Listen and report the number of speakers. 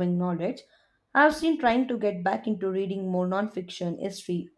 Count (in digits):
1